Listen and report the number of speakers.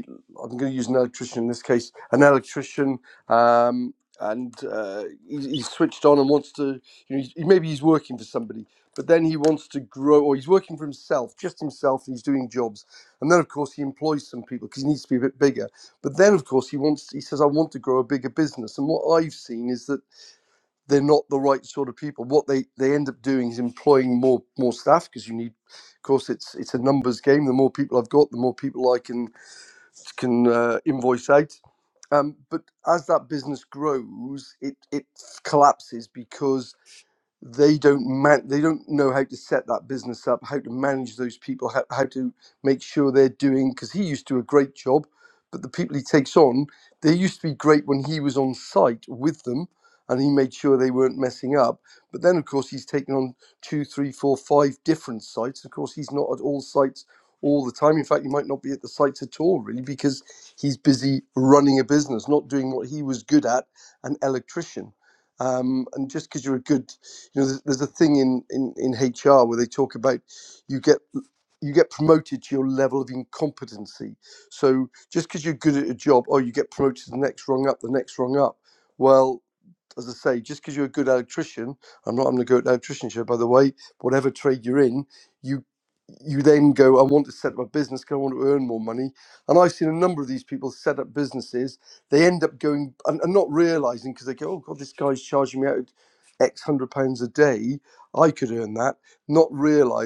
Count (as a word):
one